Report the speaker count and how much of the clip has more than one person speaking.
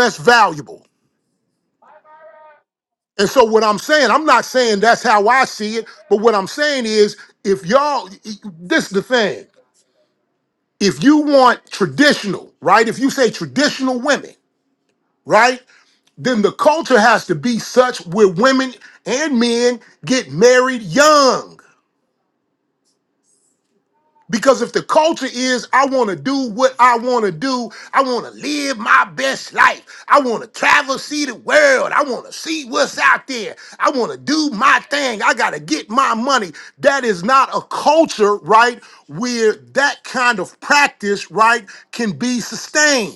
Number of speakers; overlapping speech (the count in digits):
1, no overlap